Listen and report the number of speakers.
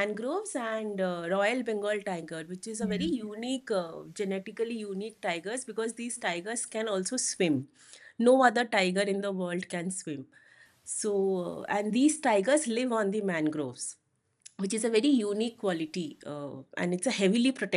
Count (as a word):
one